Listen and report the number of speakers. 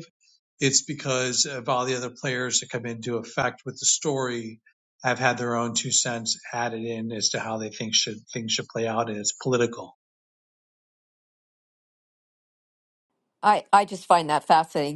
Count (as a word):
two